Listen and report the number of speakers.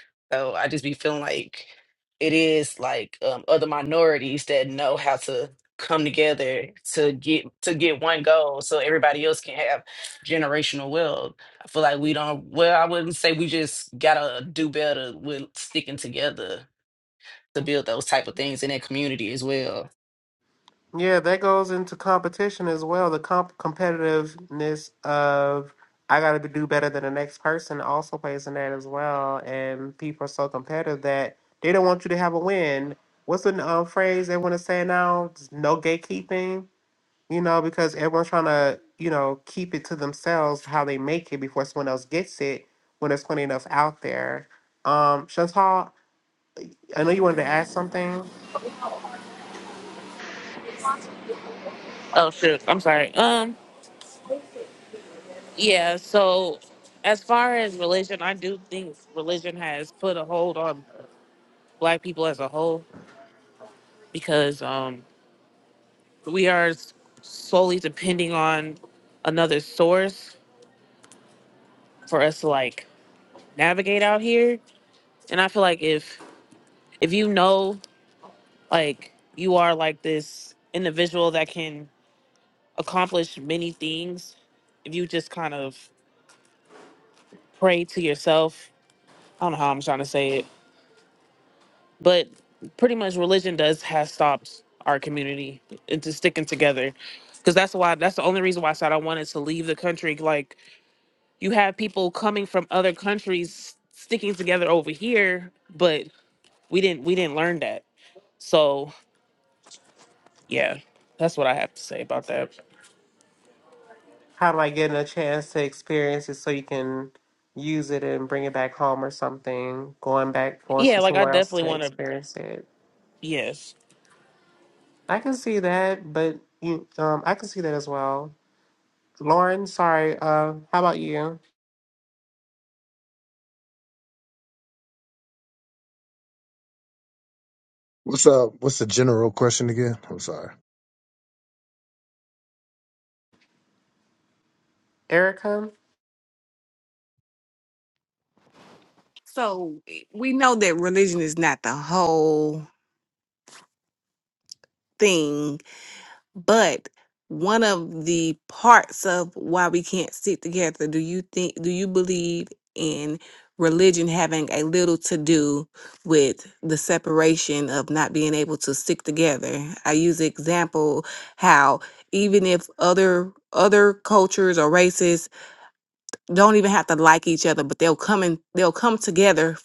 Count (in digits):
5